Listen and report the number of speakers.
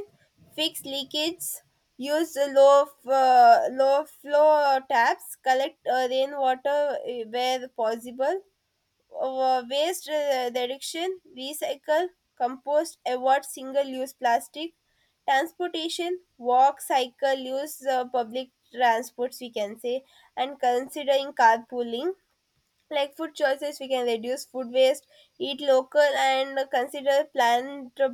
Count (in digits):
1